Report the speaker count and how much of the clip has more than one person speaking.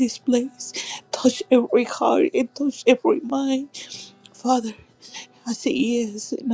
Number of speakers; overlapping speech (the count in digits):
1, no overlap